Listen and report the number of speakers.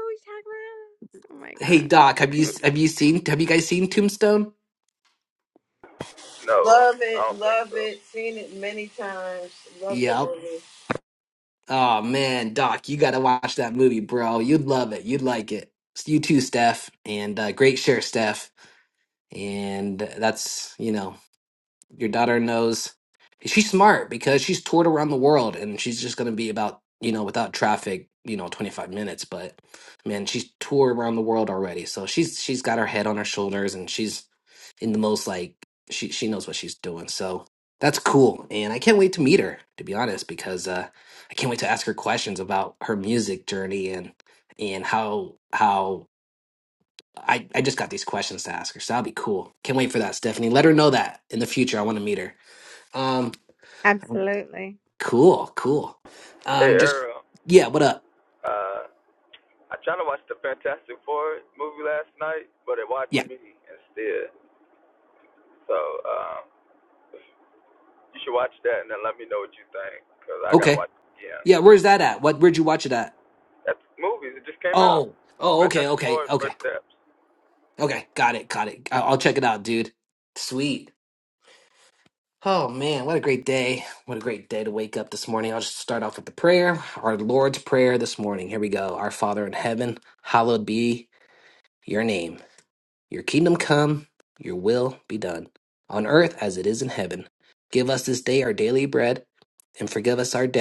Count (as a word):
four